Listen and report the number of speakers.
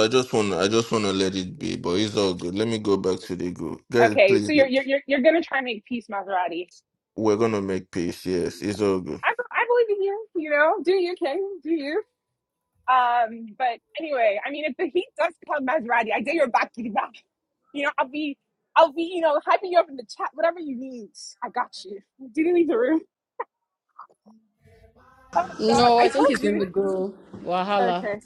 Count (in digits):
3